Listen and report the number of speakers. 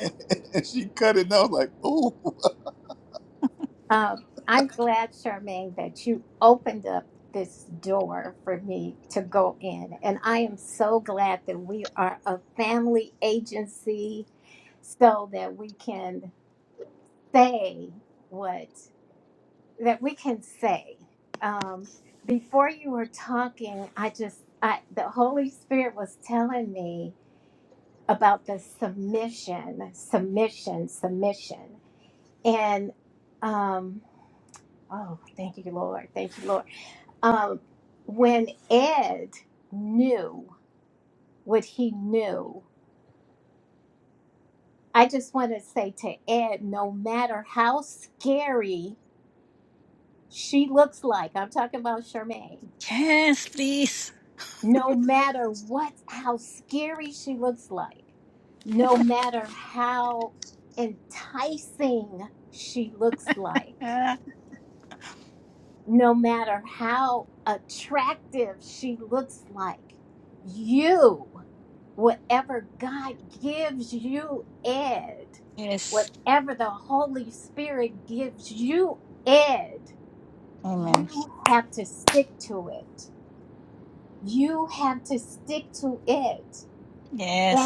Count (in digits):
3